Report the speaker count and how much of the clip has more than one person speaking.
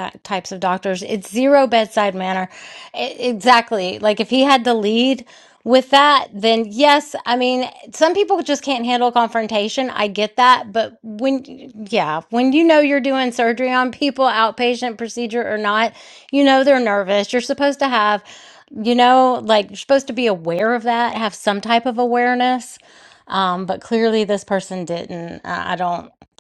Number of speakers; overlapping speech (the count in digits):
1, no overlap